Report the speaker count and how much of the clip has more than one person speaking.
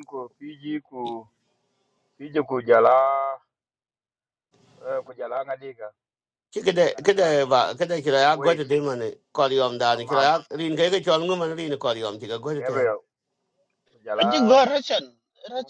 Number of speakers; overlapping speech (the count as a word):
three, about 11%